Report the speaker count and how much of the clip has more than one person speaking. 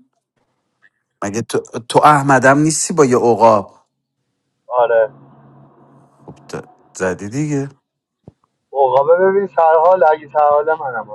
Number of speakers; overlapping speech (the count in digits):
2, no overlap